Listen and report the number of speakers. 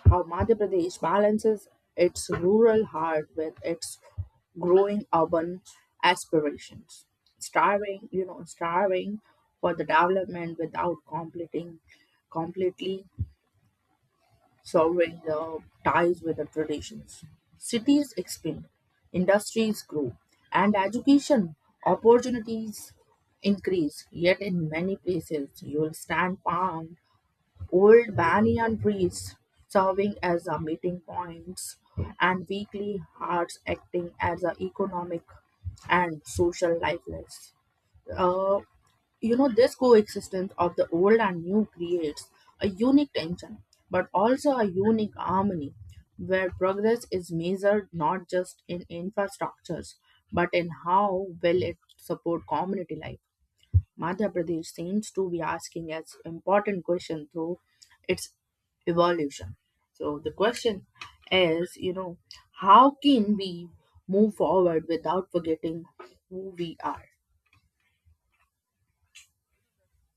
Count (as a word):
one